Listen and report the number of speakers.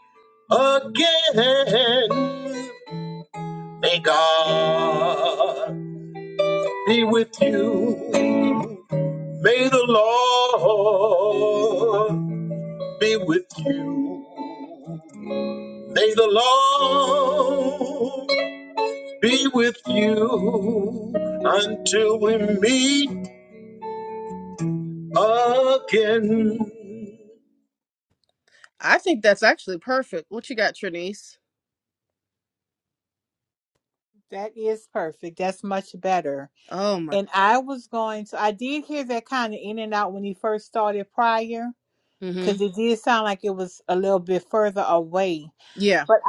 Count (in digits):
3